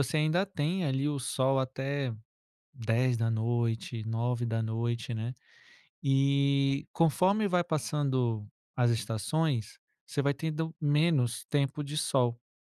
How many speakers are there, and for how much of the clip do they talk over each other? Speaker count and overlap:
1, no overlap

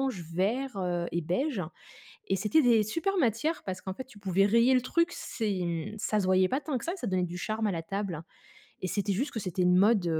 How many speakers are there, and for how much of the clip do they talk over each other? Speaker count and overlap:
1, no overlap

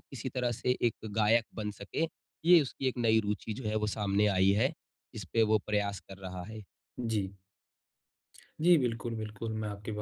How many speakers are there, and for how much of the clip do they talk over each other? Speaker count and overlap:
2, no overlap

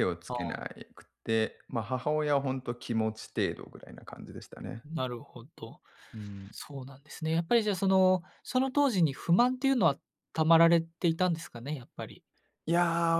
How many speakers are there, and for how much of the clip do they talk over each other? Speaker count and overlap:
2, about 2%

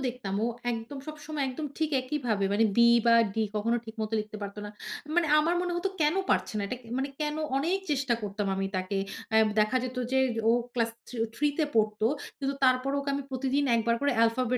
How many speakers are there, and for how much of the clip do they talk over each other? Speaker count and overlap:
1, no overlap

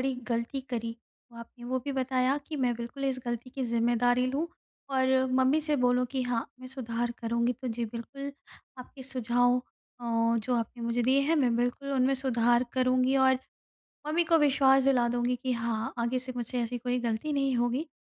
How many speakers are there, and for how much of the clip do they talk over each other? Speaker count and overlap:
1, no overlap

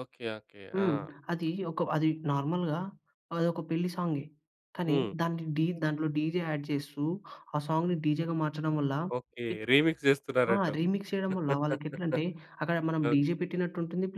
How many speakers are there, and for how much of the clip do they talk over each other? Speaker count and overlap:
2, about 7%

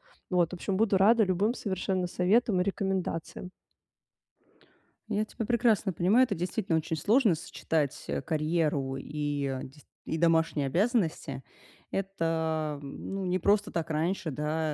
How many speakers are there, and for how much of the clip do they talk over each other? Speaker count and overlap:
2, no overlap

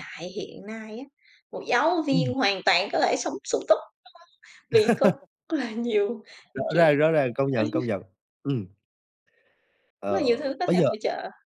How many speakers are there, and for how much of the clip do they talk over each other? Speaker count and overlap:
2, about 8%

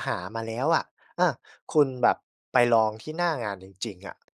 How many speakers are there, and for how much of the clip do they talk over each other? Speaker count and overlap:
1, no overlap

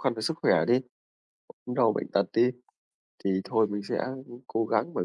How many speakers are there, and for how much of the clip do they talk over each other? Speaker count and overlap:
1, no overlap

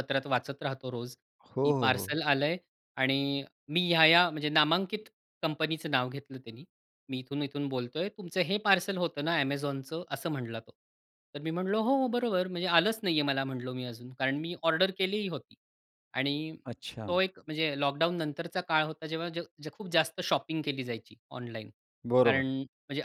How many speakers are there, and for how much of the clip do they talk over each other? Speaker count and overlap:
2, about 3%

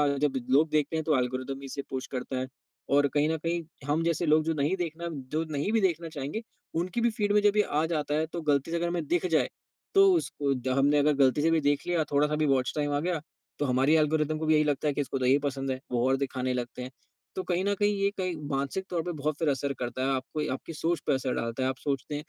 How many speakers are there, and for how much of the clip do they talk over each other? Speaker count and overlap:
1, no overlap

